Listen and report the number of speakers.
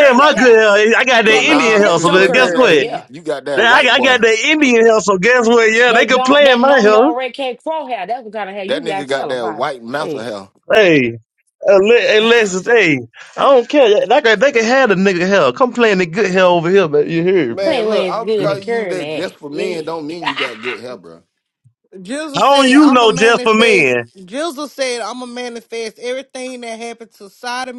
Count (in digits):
4